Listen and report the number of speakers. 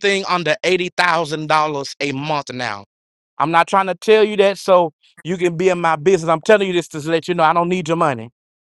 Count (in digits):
1